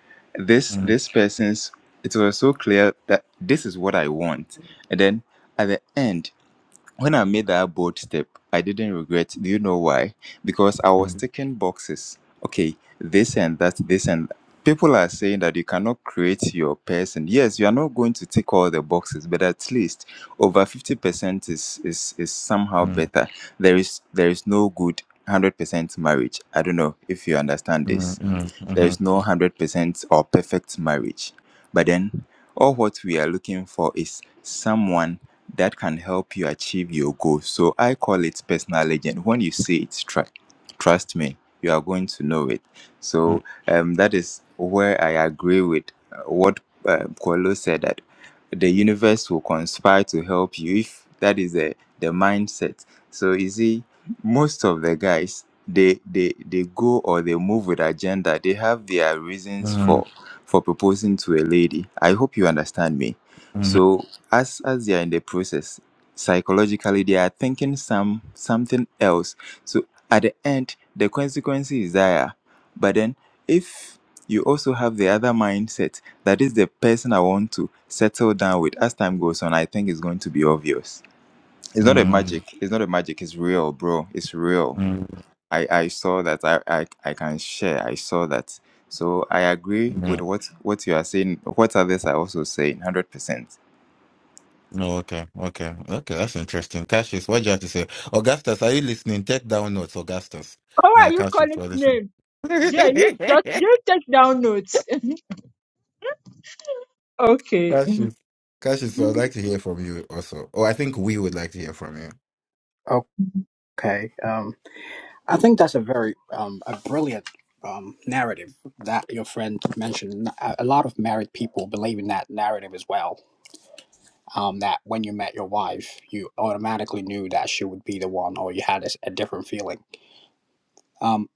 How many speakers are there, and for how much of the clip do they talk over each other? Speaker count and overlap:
4, about 3%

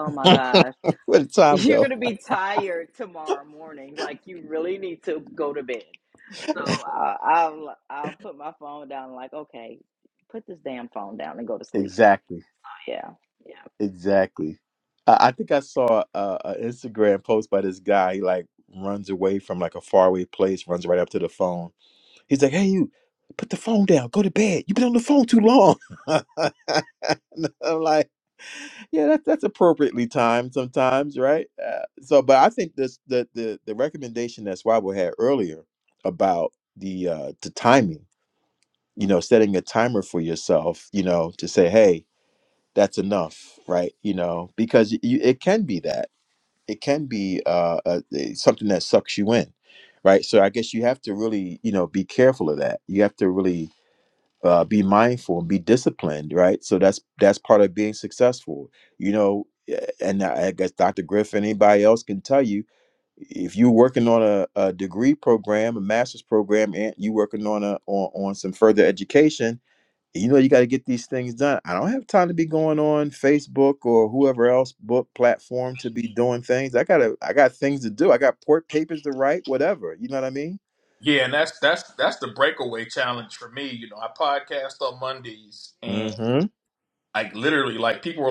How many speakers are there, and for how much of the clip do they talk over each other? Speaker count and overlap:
3, about 1%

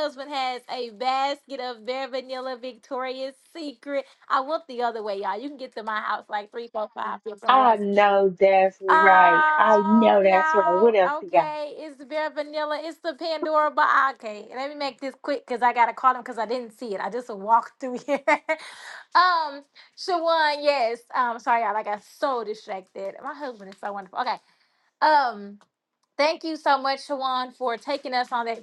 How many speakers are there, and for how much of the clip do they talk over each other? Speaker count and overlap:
2, about 10%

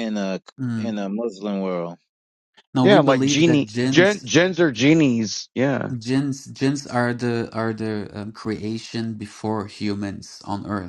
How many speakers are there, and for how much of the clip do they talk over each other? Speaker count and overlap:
3, about 15%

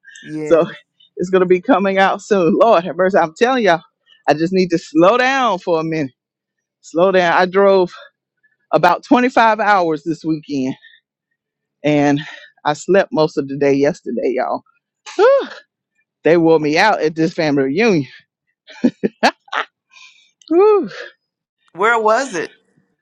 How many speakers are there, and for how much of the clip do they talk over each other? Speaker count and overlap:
2, about 1%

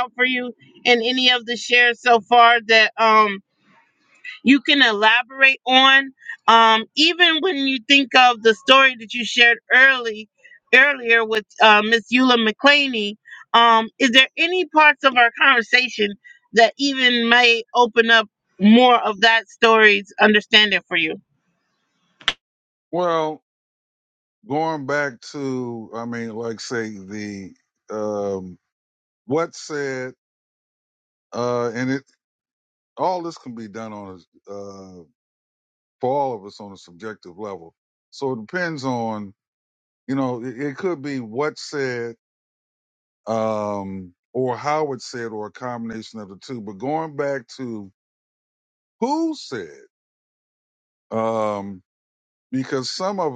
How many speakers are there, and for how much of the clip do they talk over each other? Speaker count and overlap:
2, no overlap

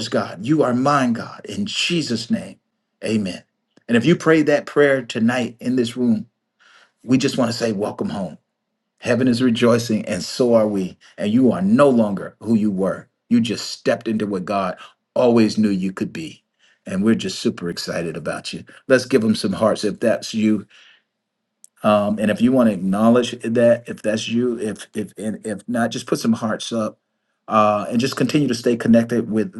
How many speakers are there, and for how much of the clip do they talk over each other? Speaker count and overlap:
1, no overlap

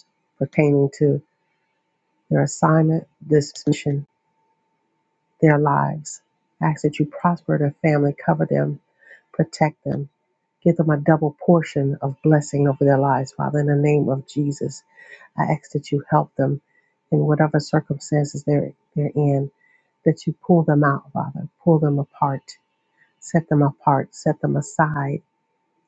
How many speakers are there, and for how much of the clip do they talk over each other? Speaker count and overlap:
1, no overlap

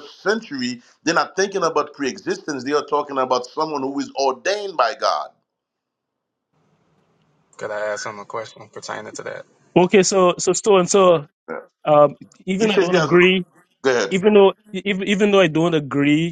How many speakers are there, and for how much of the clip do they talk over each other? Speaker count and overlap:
3, about 4%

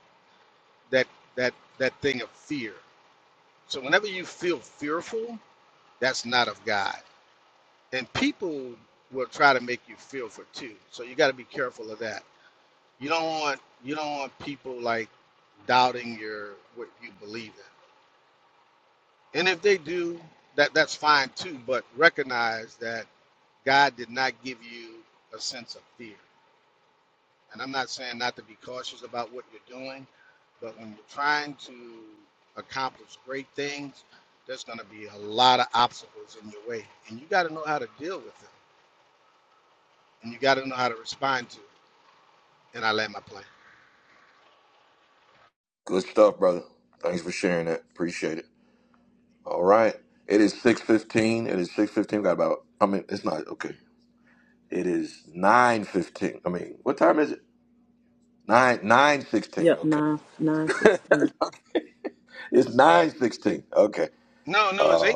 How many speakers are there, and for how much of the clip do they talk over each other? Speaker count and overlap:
3, about 1%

